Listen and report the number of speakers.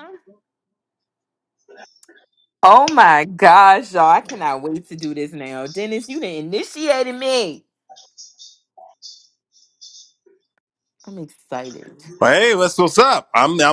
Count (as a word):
two